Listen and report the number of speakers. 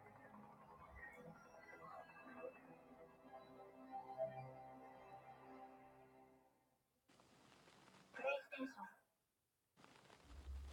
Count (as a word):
zero